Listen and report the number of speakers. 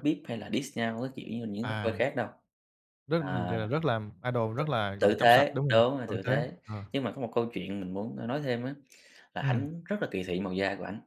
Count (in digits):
2